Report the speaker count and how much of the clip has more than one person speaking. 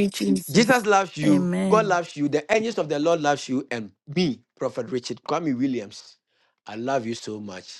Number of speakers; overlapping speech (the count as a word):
two, about 11%